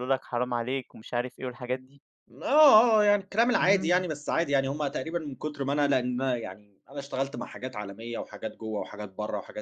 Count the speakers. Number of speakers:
2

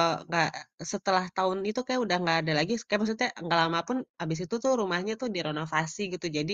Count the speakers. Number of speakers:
1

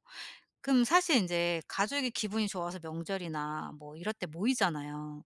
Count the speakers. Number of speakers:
1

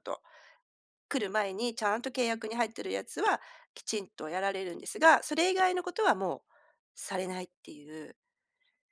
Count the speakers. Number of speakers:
1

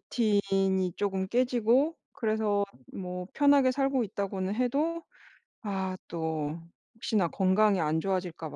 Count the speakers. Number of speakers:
1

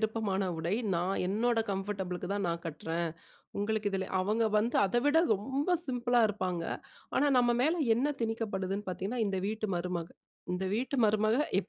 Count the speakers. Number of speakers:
1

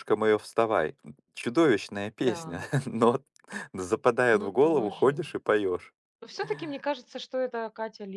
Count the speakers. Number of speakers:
2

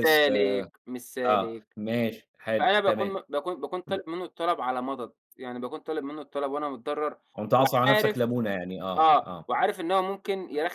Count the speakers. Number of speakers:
2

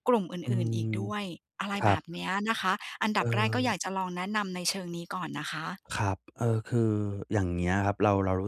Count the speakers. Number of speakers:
2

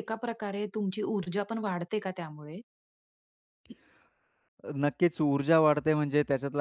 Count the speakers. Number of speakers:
2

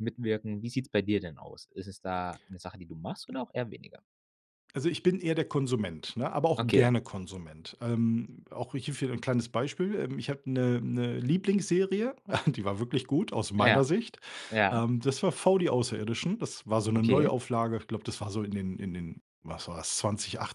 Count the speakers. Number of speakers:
2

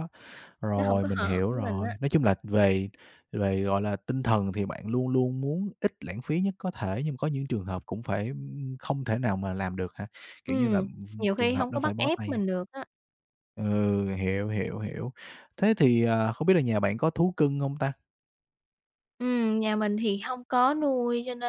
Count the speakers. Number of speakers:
2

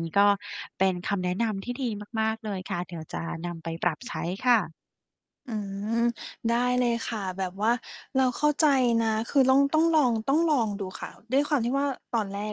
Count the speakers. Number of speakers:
2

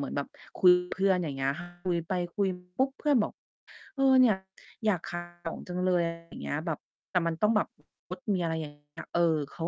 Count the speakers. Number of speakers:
1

